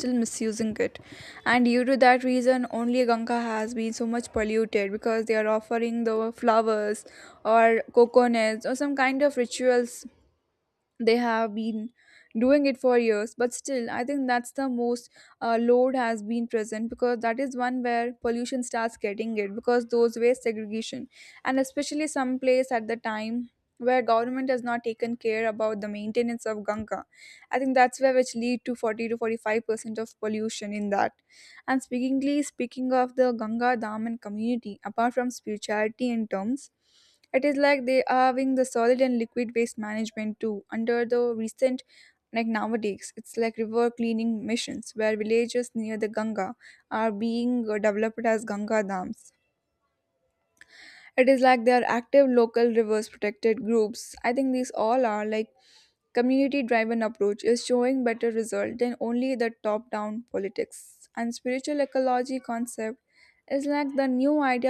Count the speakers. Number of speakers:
1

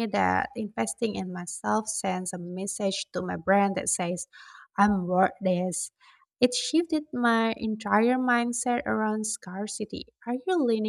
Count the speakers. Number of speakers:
1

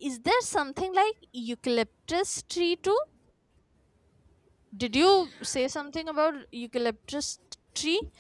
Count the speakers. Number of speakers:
1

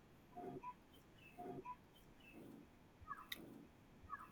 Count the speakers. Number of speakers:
0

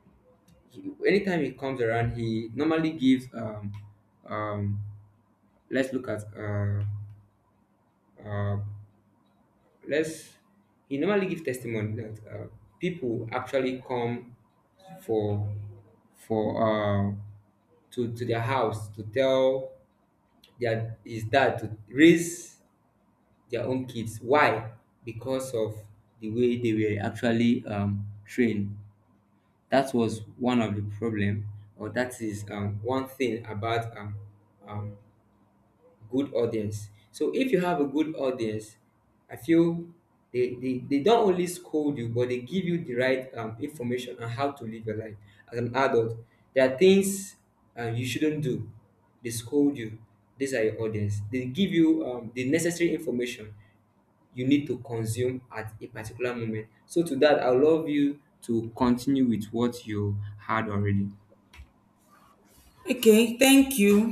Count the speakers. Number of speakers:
2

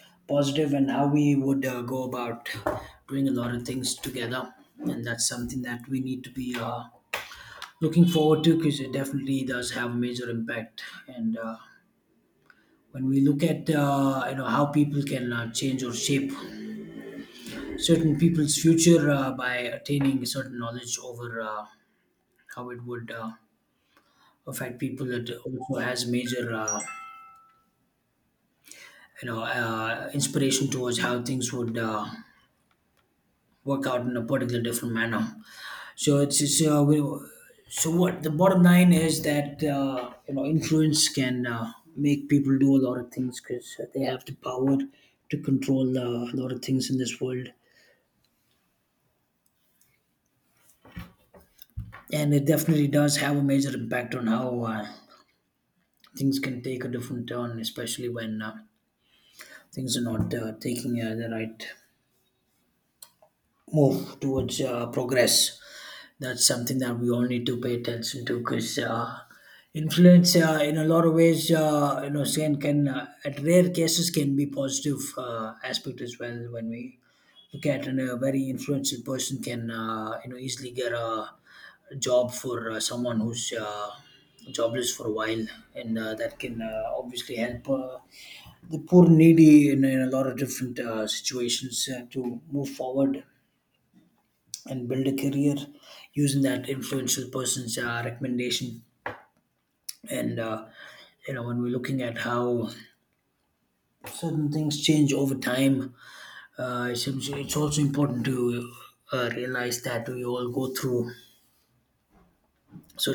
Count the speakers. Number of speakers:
1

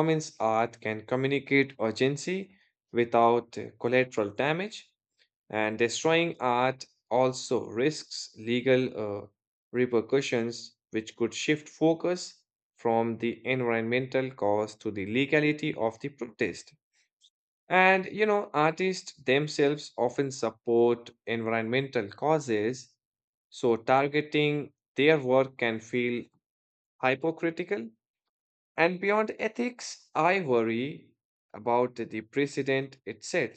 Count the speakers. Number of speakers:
1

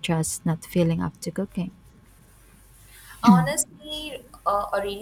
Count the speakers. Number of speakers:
2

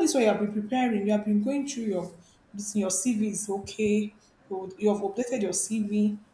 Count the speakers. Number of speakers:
1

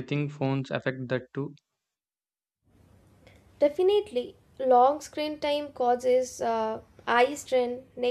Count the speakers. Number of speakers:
2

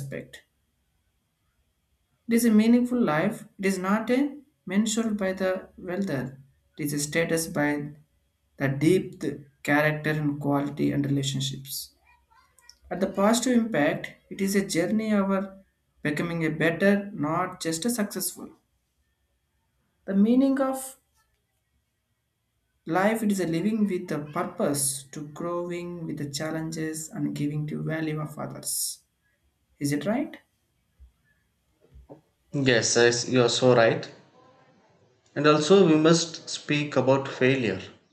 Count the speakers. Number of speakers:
2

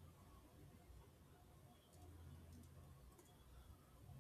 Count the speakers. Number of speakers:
0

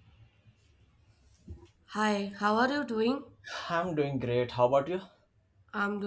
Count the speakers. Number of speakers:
2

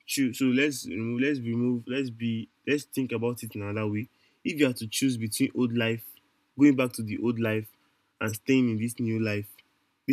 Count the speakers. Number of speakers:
1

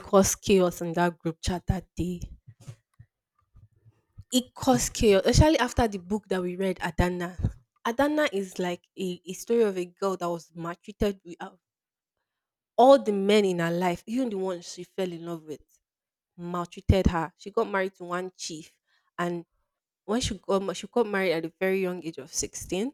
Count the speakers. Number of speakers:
1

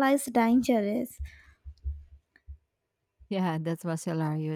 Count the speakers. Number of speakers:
2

